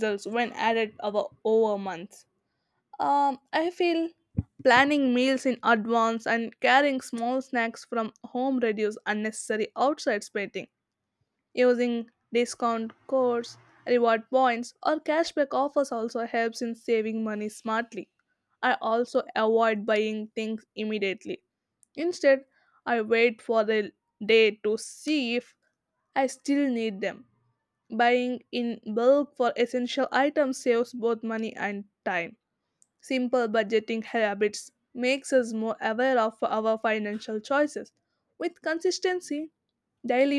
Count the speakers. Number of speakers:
1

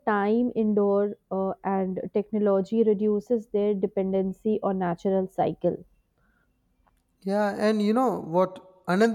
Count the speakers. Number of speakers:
2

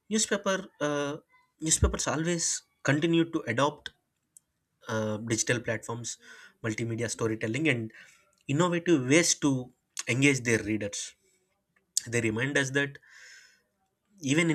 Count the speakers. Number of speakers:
1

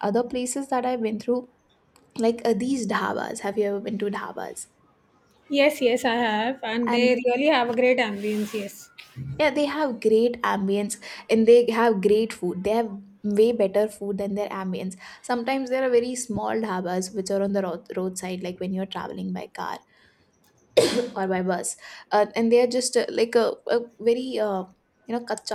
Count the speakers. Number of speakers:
2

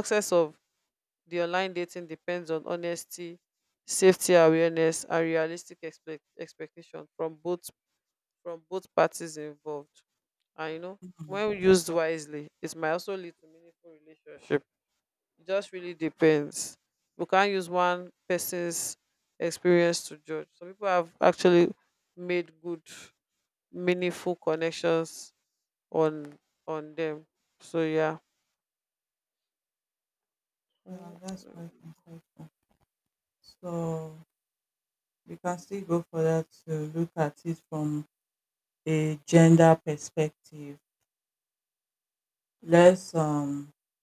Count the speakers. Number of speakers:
2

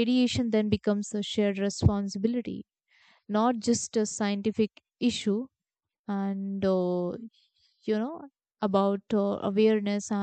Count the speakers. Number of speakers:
1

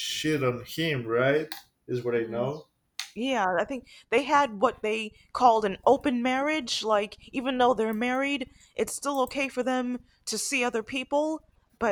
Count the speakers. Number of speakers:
2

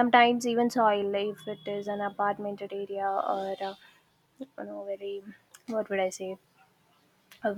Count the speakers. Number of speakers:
1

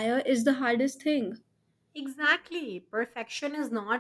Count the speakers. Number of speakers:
2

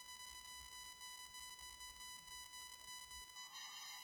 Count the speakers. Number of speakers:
0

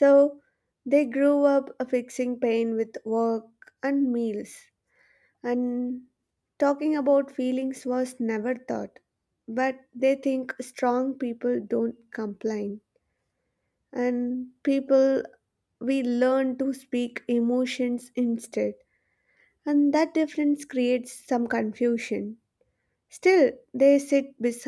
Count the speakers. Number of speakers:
1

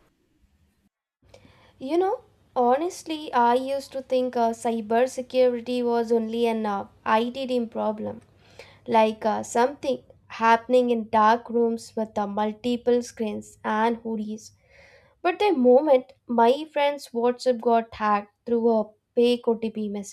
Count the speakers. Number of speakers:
1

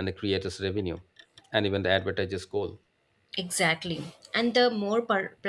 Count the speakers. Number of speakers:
2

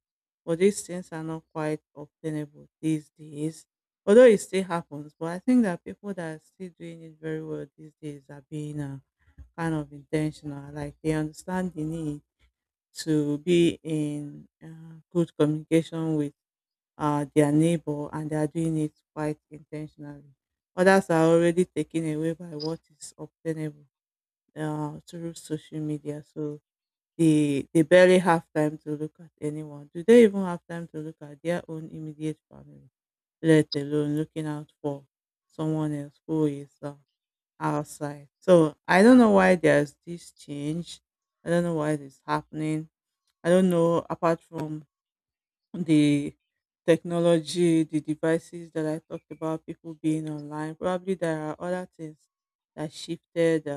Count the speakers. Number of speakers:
1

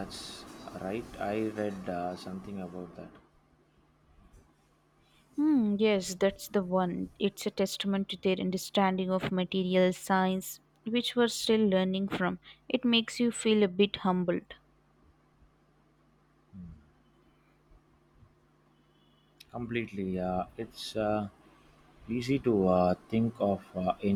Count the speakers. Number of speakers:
2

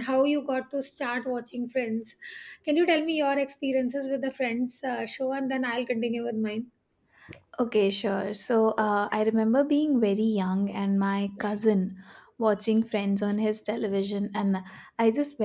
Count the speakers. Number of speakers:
2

